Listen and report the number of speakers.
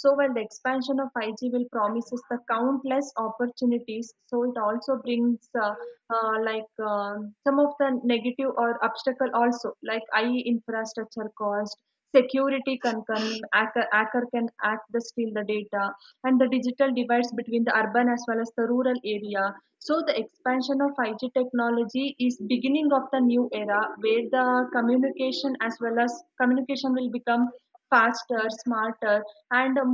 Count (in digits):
1